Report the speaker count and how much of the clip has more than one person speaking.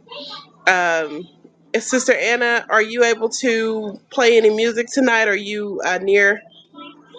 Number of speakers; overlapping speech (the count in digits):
1, no overlap